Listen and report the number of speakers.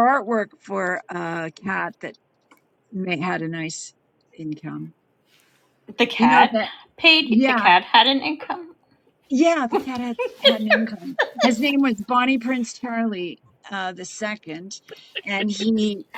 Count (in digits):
2